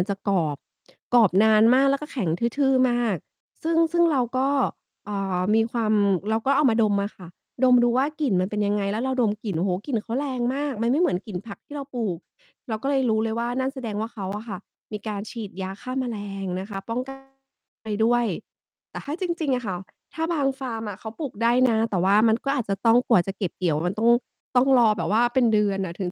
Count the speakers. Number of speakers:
one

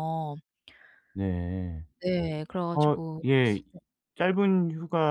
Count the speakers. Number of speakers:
two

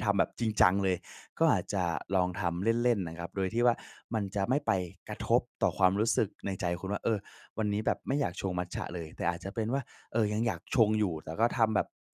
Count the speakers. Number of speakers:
one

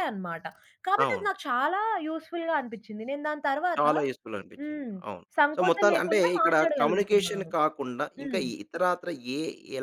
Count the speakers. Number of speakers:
two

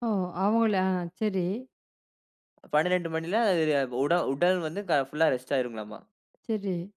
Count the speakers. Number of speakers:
two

